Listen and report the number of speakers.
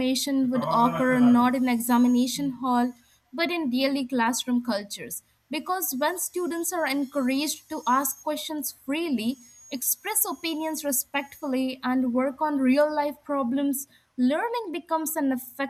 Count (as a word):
one